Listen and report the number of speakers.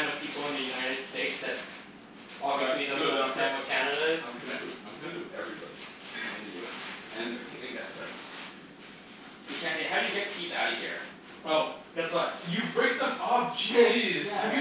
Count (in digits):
3